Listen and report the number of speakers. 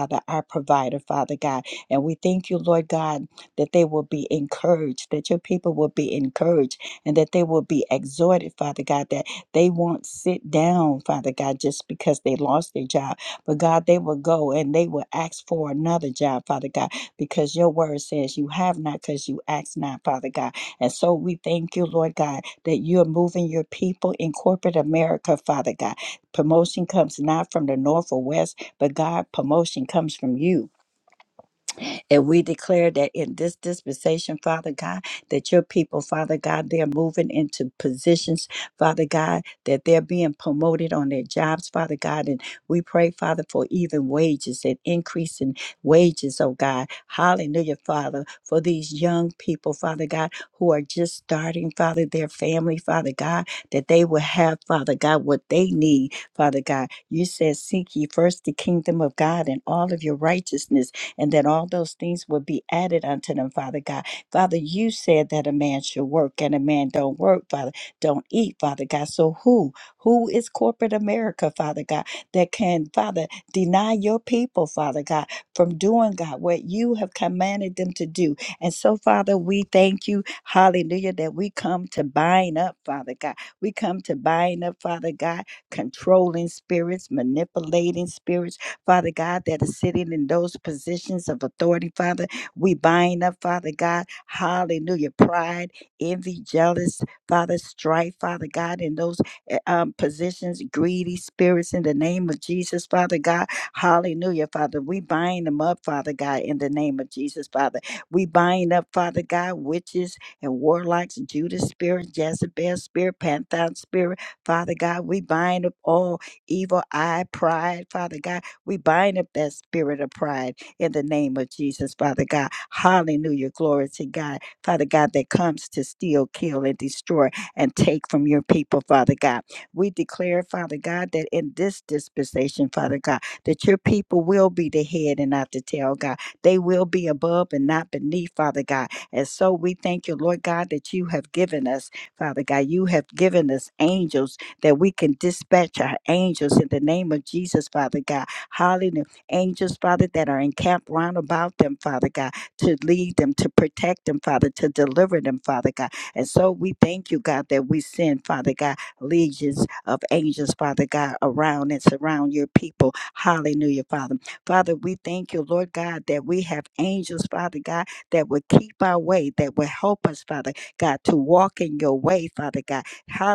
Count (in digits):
1